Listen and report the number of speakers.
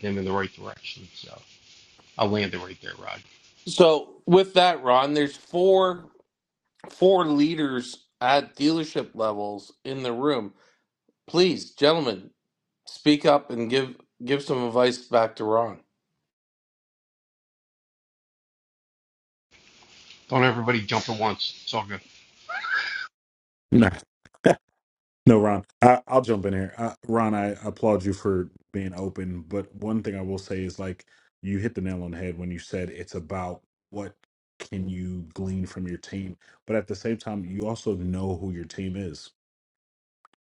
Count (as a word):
three